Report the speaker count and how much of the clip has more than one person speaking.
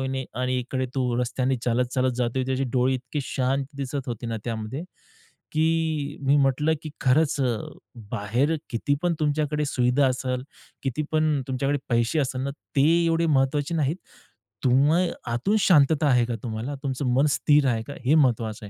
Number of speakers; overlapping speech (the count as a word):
one, no overlap